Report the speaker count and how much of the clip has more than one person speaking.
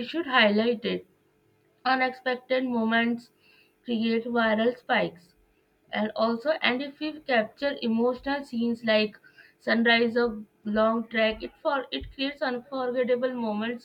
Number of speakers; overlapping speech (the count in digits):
1, no overlap